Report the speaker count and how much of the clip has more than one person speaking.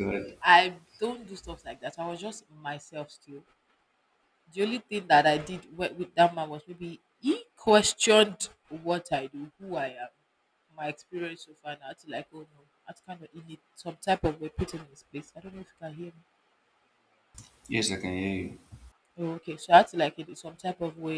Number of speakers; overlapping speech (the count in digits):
2, no overlap